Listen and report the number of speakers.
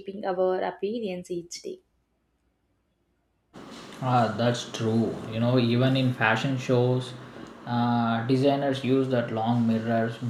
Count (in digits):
2